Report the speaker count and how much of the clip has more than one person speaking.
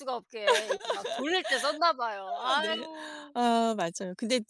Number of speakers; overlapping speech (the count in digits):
2, about 9%